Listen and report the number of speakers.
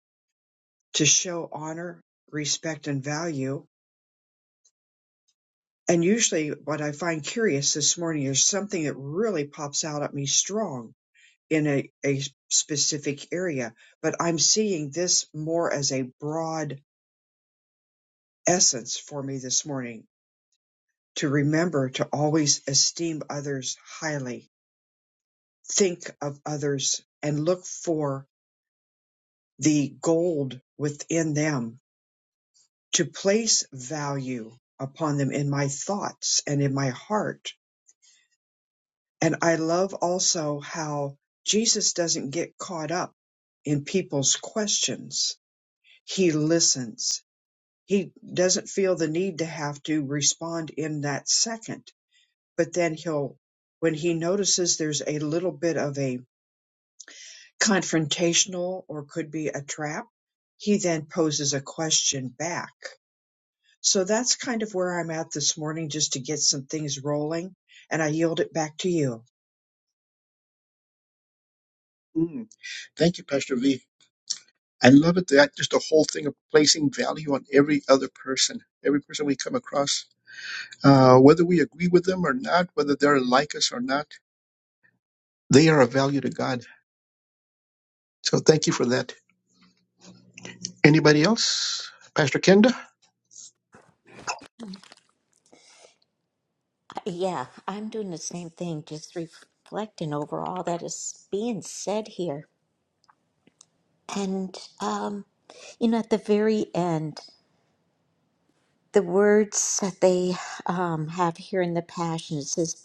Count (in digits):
3